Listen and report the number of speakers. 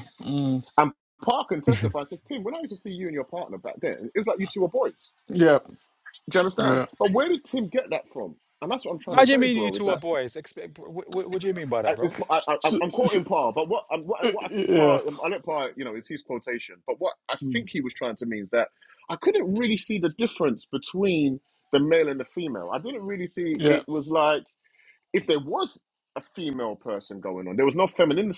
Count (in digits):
3